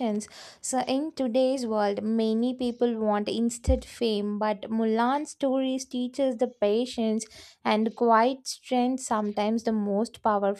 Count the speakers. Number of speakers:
1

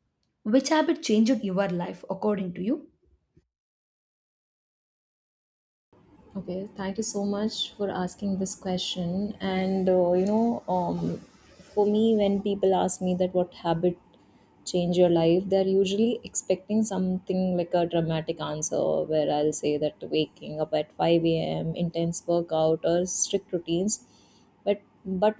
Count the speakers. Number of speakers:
2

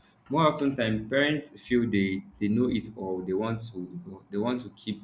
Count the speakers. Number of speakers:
1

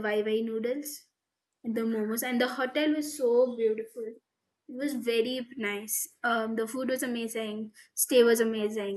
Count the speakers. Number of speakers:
1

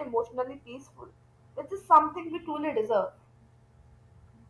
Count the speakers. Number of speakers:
1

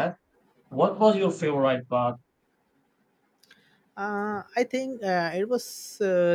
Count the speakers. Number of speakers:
2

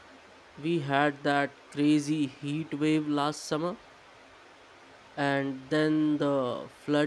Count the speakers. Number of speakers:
1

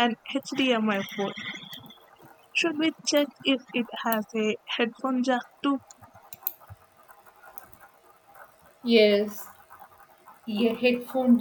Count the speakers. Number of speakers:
2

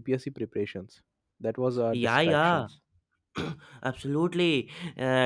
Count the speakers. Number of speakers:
2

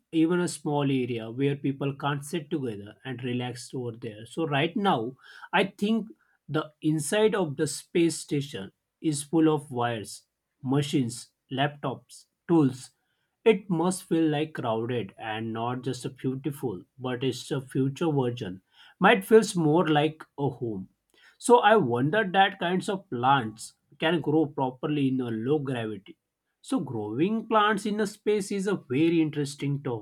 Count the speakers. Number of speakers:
1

